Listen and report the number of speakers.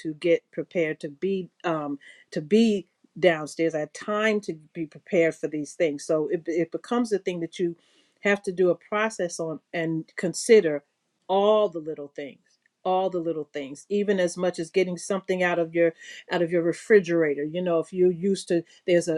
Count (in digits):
1